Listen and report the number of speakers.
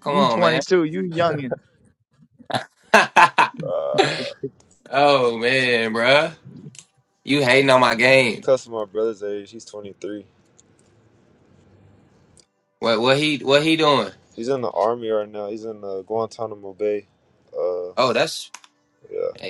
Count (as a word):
three